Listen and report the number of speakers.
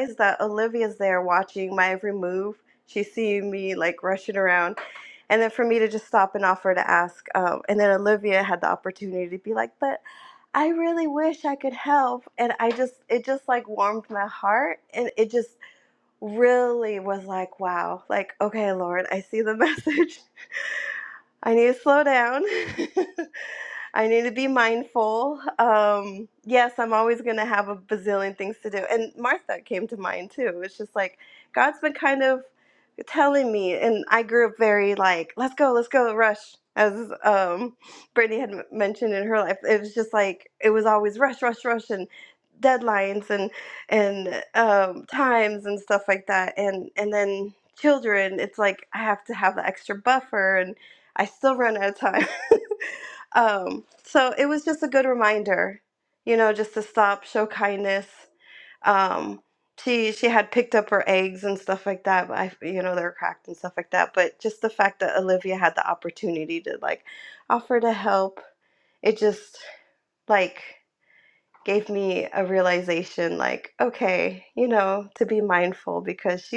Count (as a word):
one